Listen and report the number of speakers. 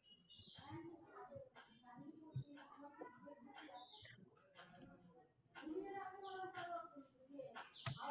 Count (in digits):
0